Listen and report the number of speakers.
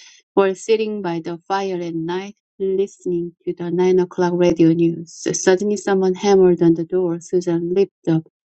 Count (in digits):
1